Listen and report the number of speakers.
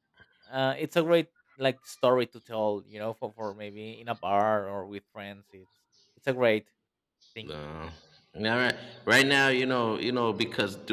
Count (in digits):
2